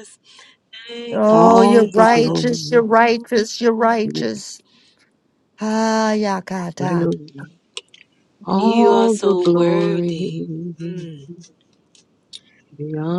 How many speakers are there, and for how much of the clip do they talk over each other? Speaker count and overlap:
three, about 28%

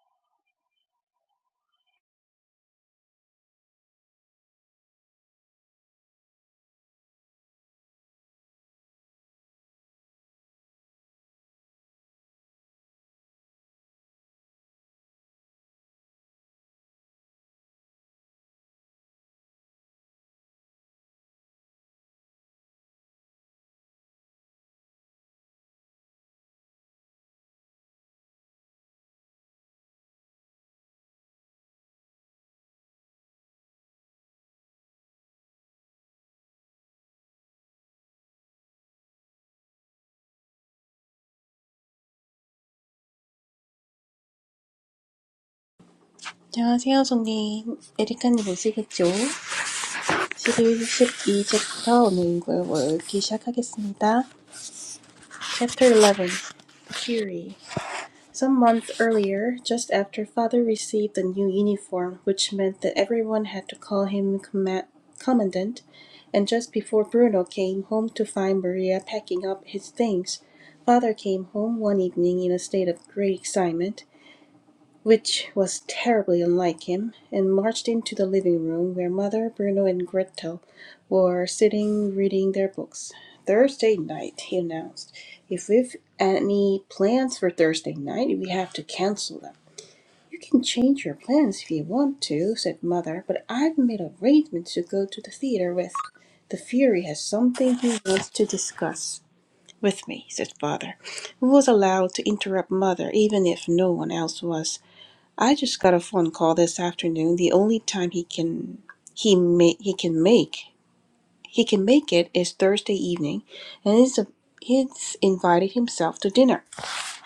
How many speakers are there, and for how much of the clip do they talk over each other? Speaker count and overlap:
one, no overlap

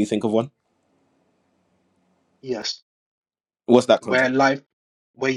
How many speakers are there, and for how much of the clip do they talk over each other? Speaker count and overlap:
two, about 5%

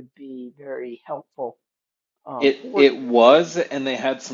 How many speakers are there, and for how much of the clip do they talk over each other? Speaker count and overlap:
two, about 16%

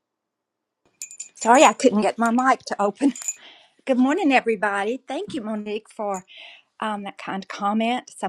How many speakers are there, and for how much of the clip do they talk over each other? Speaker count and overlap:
one, no overlap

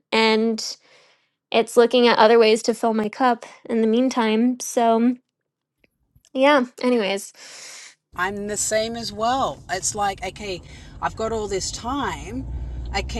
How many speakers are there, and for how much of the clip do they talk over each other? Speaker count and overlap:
two, no overlap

